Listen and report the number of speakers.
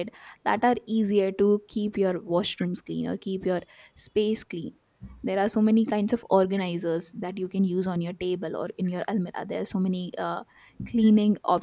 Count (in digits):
1